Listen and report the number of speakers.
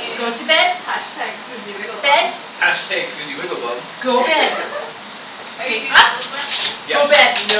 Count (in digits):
3